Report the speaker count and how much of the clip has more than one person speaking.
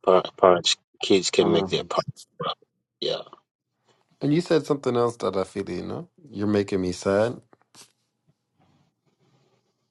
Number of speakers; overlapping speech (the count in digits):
2, about 5%